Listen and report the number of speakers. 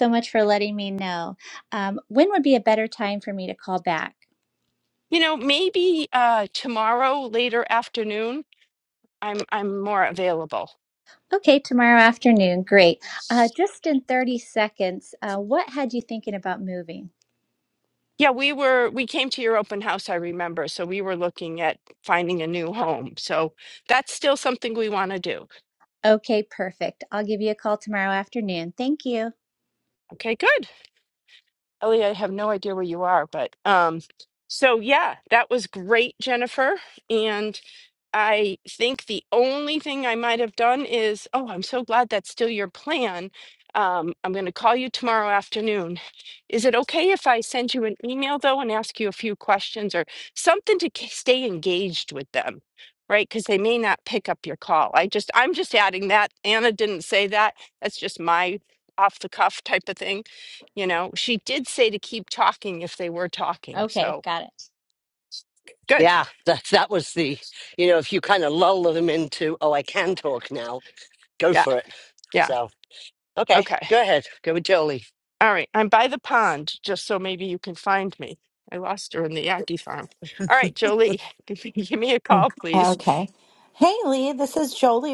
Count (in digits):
4